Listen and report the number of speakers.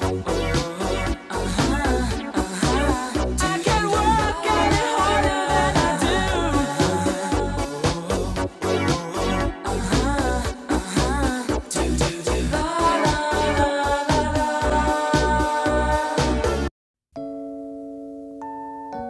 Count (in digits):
0